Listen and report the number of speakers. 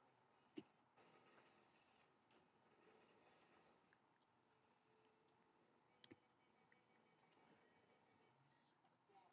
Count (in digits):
0